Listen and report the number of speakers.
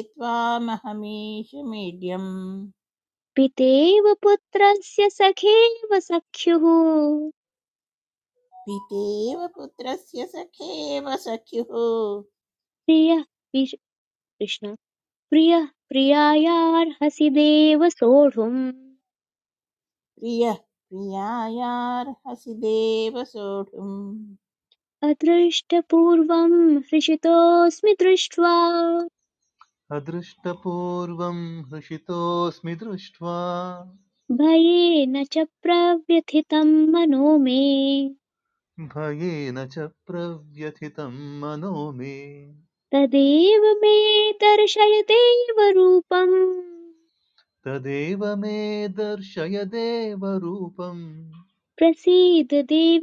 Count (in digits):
3